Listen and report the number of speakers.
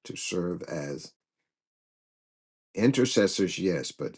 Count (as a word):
one